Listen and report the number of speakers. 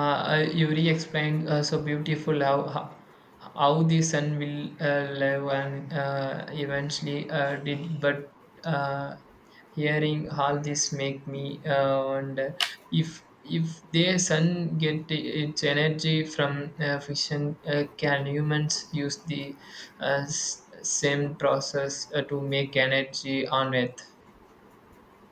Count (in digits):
1